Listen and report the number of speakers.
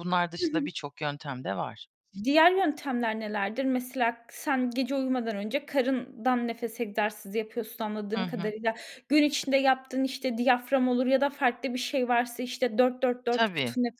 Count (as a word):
two